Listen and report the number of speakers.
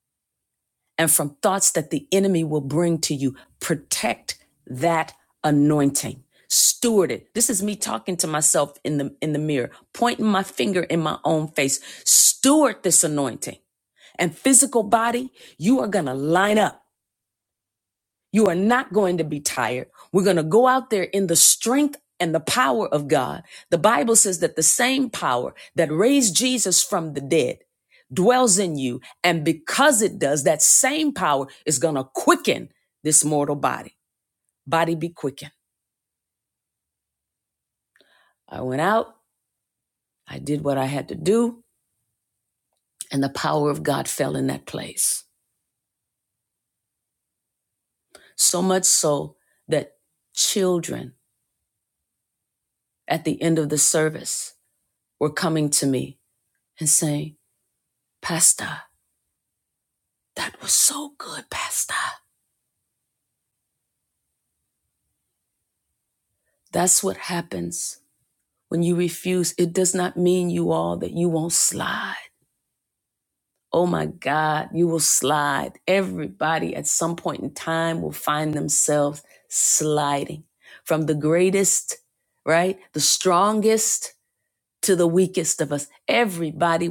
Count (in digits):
1